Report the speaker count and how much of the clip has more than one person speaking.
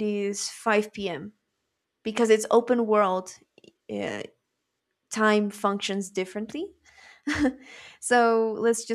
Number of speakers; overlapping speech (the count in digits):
1, no overlap